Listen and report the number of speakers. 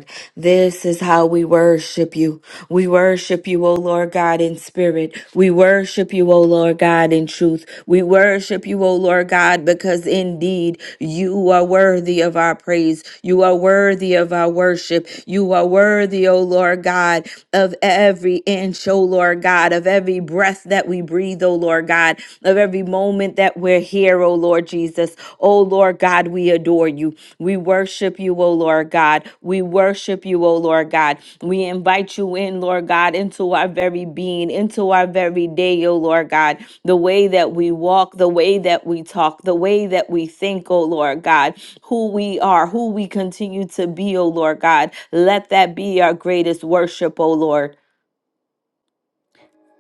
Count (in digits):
1